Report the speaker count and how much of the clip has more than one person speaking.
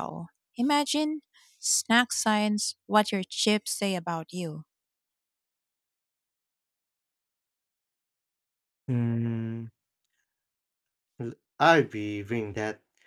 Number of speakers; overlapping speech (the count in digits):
2, no overlap